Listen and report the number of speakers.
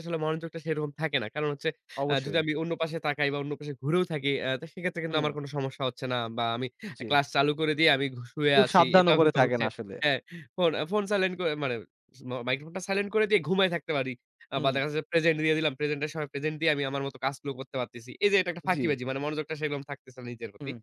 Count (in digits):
2